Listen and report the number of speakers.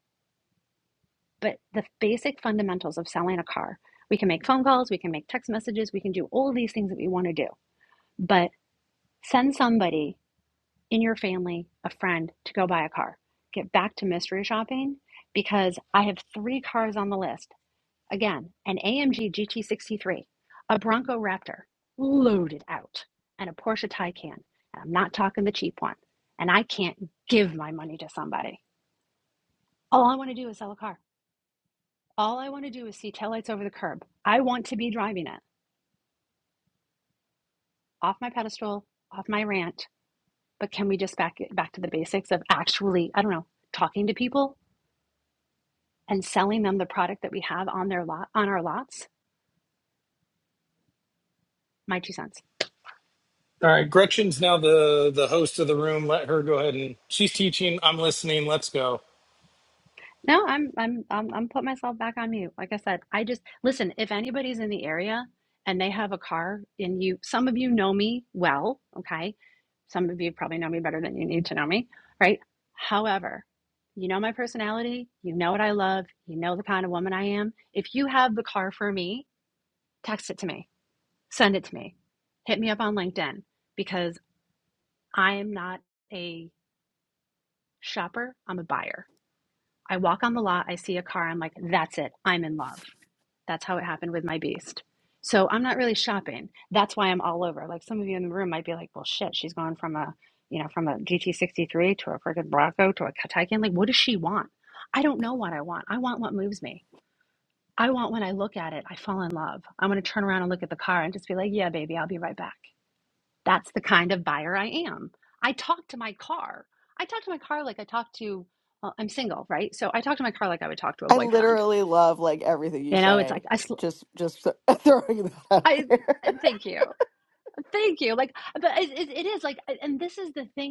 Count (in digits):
3